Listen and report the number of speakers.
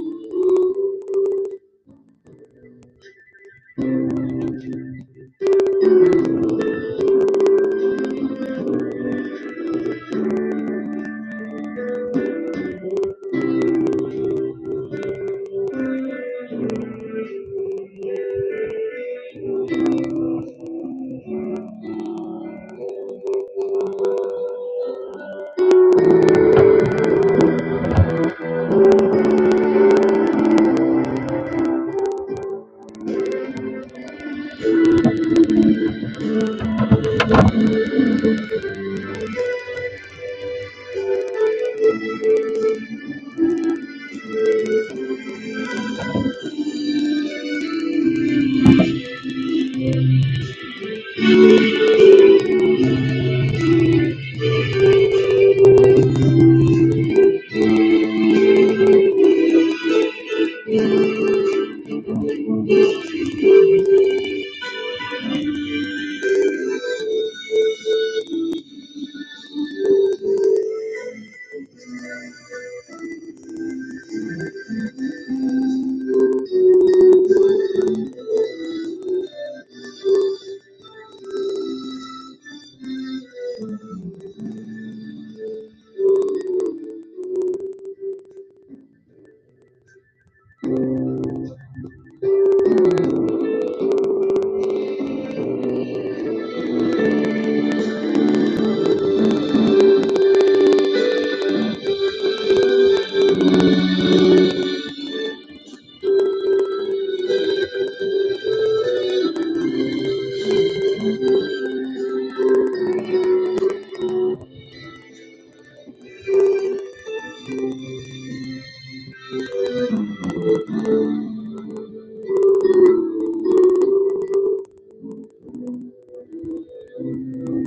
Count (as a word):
zero